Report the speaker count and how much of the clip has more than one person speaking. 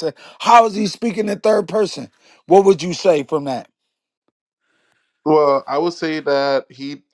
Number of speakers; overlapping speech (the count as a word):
two, no overlap